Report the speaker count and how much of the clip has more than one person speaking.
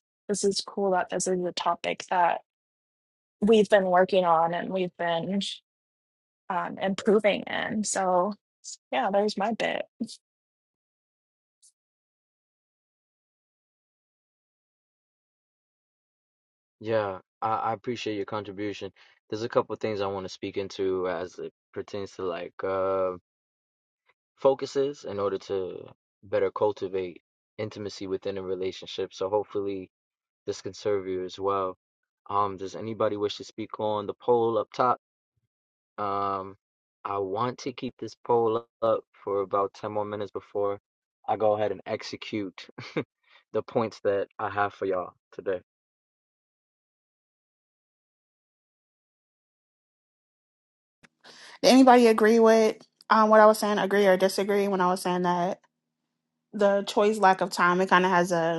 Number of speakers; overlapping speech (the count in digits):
3, no overlap